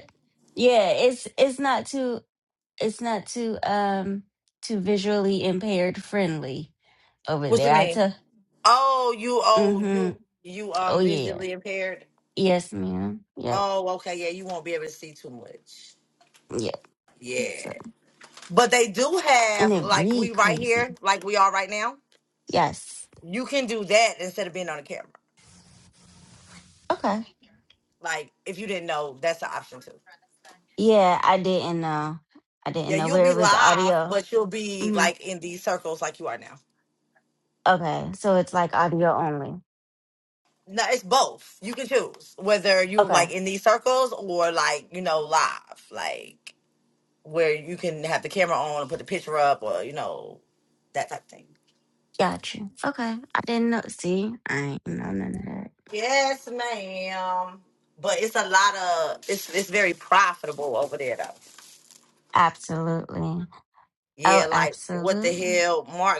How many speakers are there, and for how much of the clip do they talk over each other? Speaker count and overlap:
2, about 10%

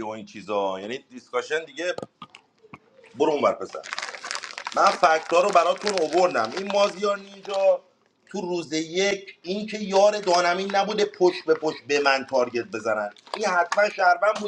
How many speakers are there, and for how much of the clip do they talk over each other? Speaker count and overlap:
1, no overlap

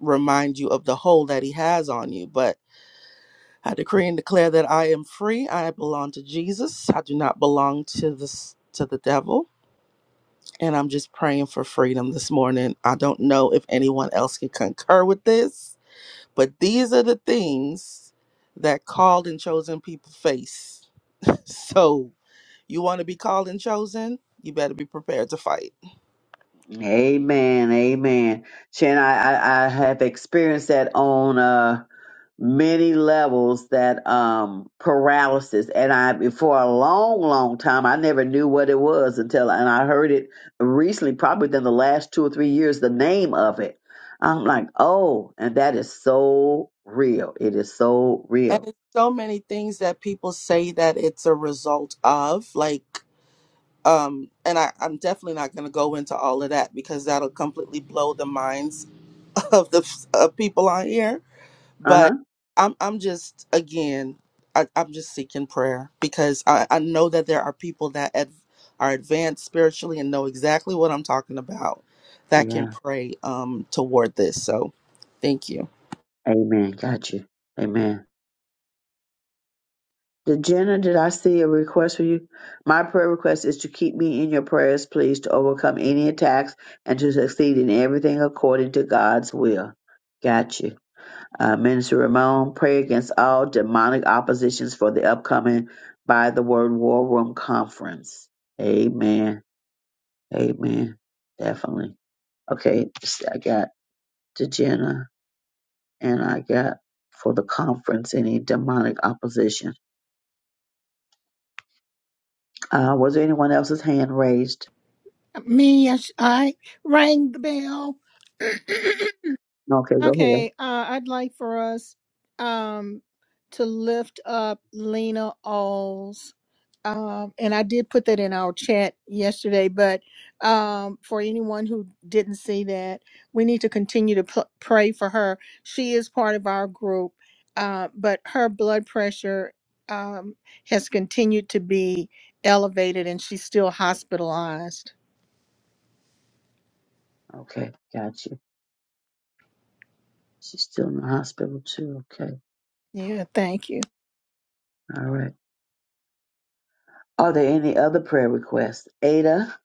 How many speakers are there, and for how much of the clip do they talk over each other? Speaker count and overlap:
3, about 1%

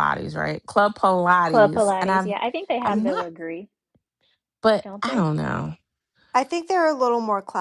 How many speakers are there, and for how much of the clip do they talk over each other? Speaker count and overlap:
3, about 23%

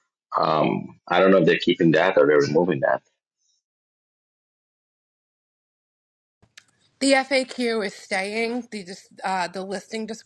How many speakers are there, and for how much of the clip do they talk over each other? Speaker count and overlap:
2, no overlap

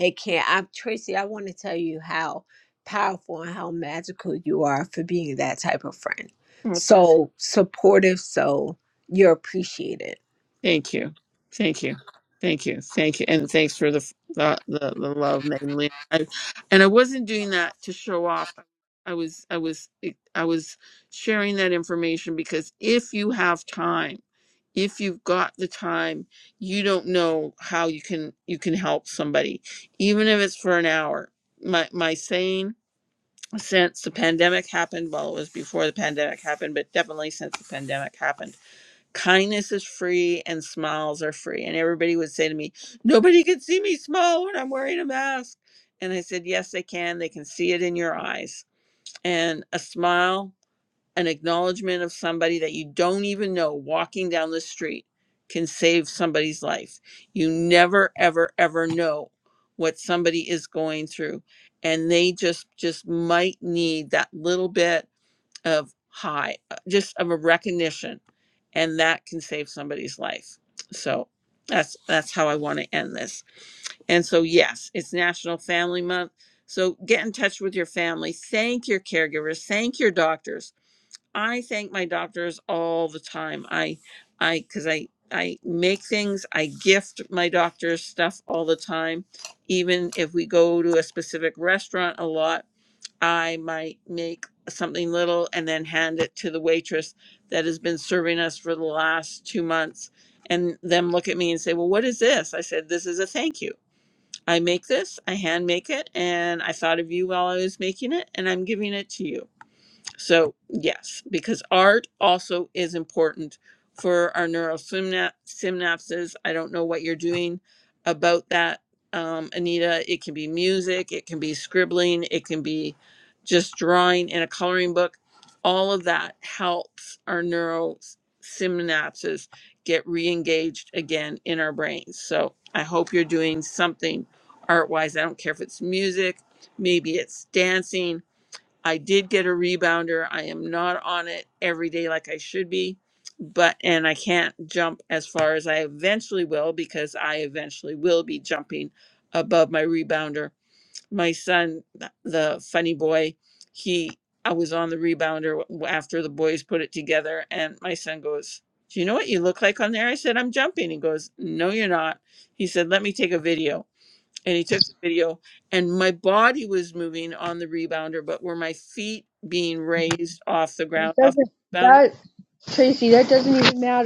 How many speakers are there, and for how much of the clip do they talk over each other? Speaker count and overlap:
3, under 1%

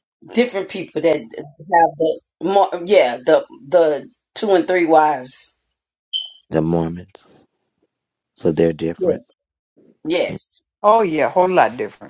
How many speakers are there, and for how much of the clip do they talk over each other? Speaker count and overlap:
3, about 1%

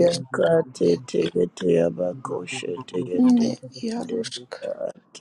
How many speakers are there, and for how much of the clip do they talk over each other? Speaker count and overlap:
2, about 14%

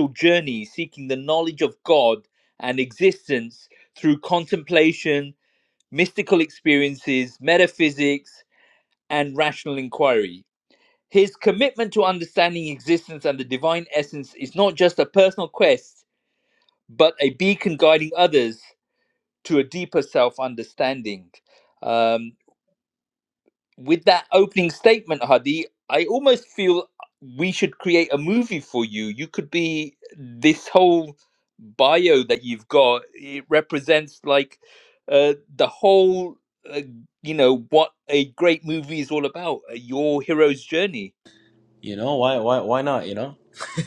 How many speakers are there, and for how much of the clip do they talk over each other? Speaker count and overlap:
2, no overlap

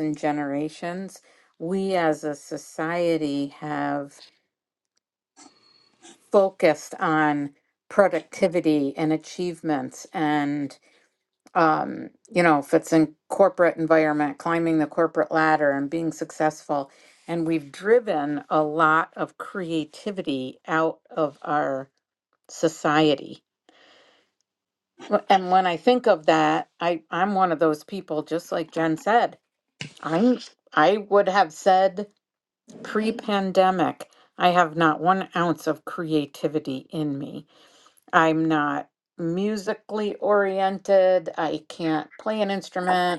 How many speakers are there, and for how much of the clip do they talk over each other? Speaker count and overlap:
1, no overlap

